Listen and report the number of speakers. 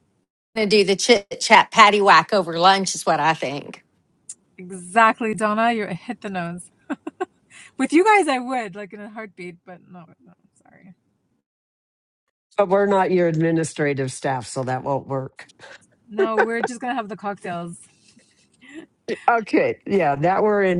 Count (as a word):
three